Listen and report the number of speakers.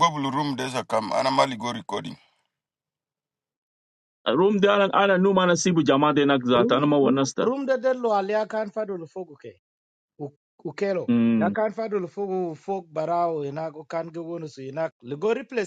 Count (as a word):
three